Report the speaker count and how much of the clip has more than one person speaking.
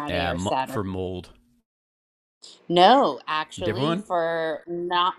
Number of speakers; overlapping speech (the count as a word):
two, about 22%